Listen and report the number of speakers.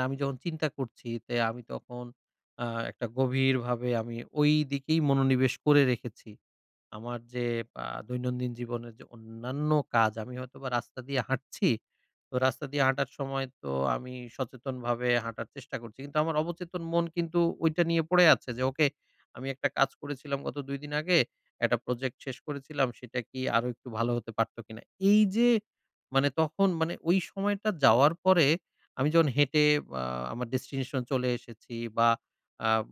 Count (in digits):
1